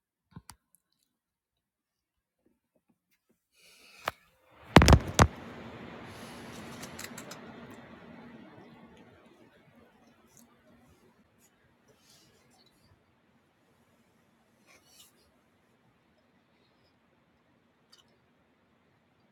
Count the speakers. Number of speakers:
0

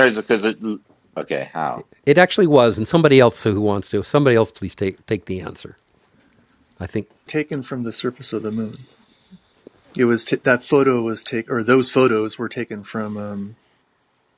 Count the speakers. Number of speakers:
3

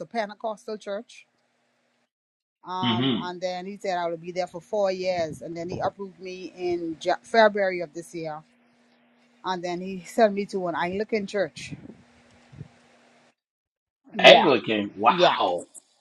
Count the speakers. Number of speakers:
2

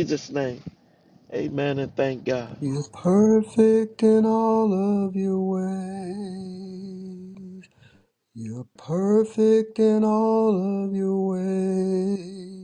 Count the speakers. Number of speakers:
2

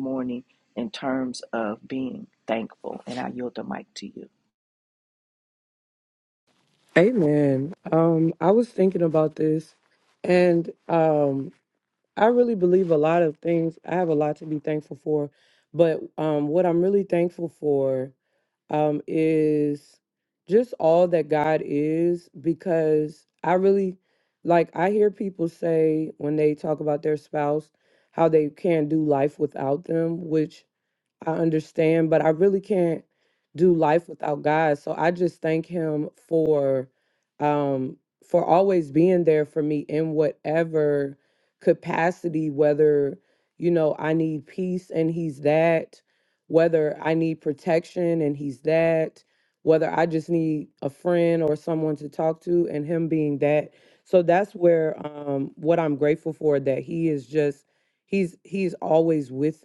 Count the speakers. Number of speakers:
2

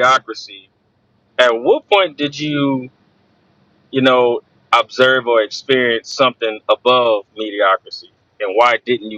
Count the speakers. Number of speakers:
1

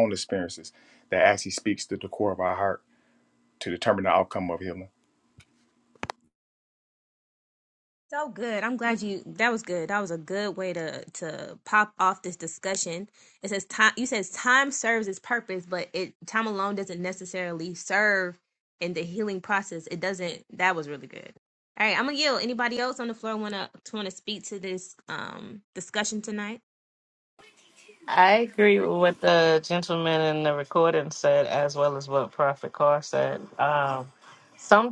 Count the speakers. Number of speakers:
3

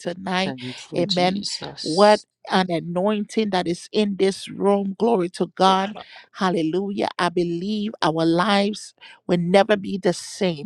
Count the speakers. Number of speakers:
2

